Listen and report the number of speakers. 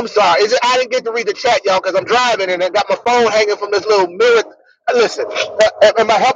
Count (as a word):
one